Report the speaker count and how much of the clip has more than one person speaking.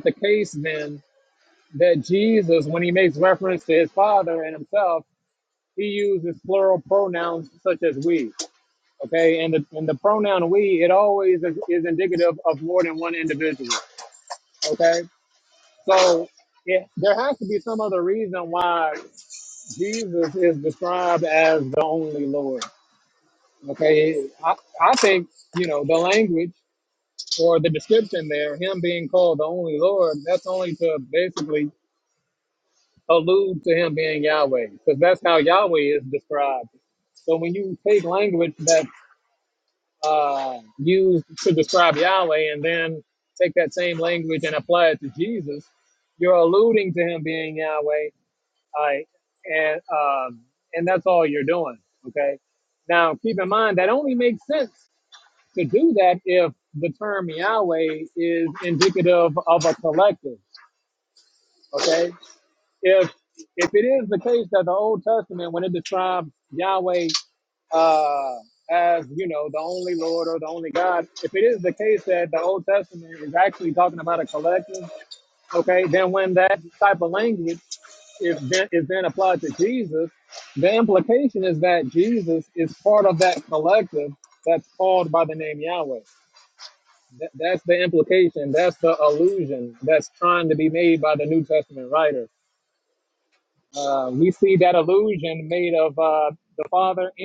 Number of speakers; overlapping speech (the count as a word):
one, no overlap